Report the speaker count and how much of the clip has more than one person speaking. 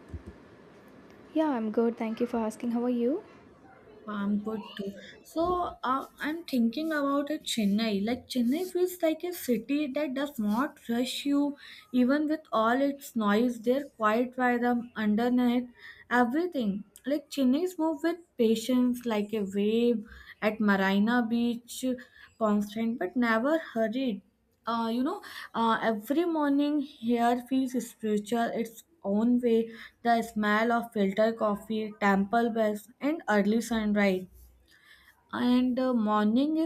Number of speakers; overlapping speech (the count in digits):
2, no overlap